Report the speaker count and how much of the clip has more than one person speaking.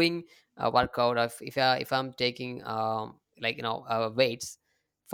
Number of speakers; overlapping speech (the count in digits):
1, no overlap